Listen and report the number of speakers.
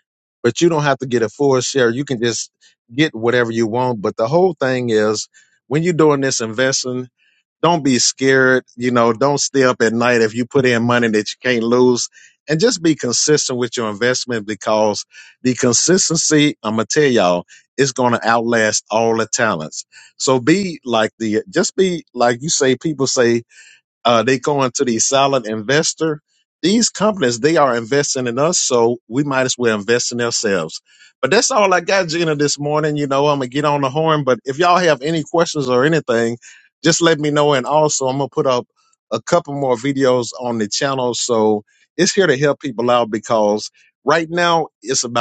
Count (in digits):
1